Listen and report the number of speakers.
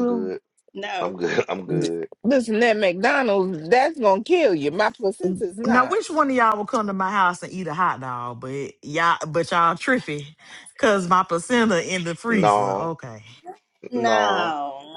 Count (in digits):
4